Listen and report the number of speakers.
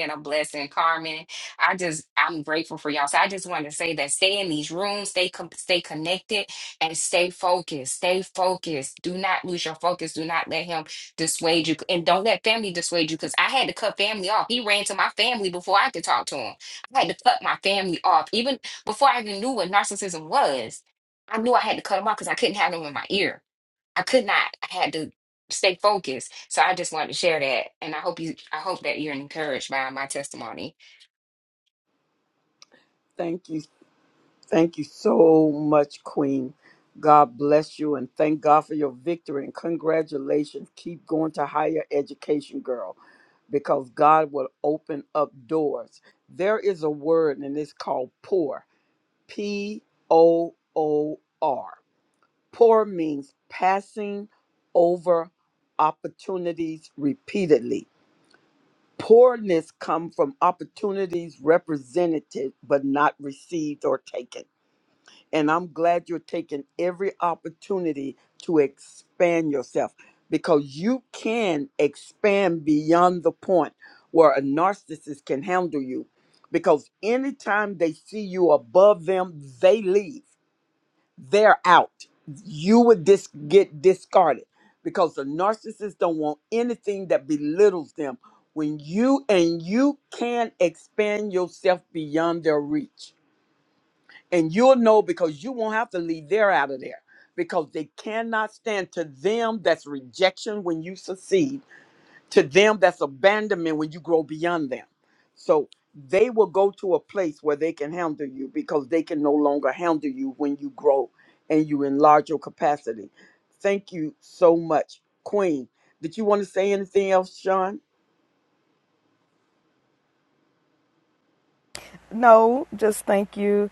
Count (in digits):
3